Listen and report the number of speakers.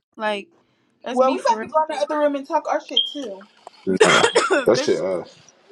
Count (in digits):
3